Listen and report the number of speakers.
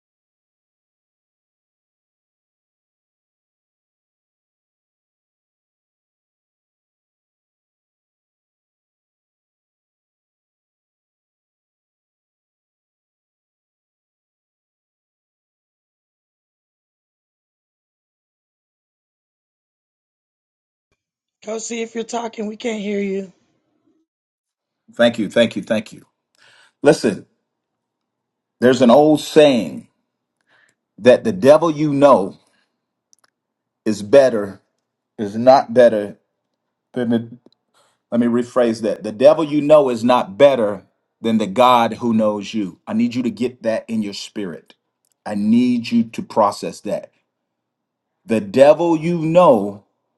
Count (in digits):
2